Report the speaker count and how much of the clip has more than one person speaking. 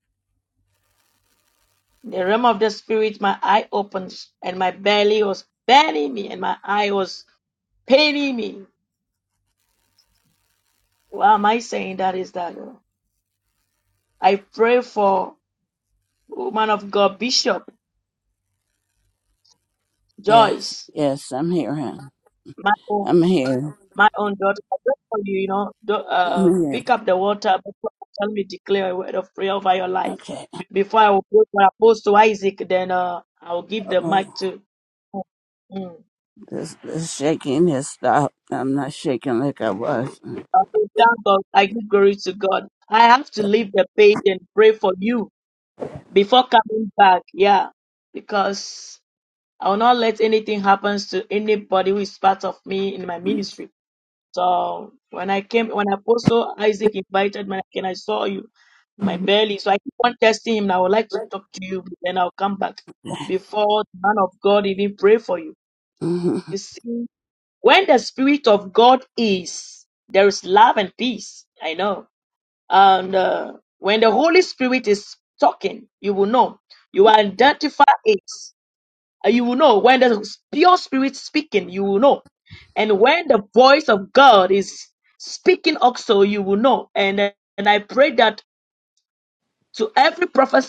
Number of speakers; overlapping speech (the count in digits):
2, about 1%